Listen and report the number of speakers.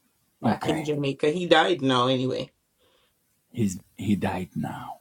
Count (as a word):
two